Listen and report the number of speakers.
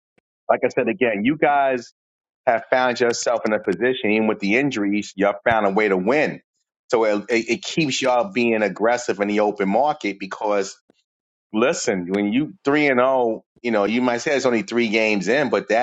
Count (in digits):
1